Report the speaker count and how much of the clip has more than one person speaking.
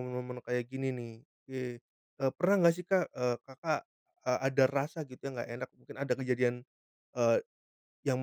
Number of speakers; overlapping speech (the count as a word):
one, no overlap